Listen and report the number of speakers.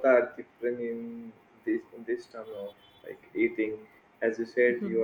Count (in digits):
1